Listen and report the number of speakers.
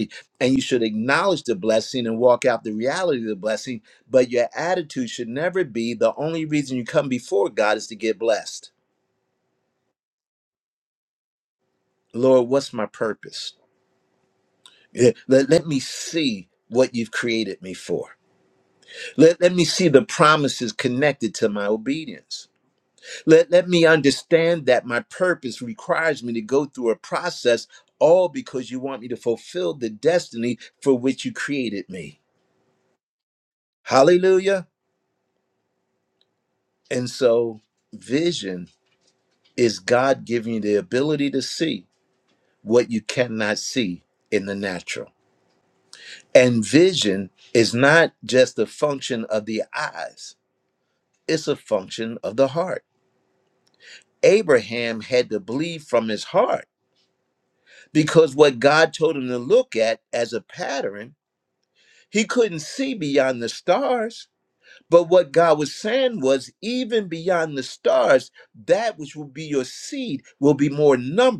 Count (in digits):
1